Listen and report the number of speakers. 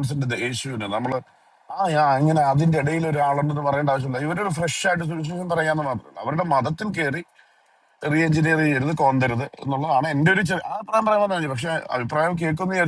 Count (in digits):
1